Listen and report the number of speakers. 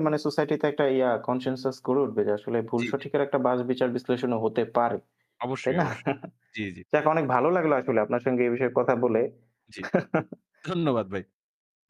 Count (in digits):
2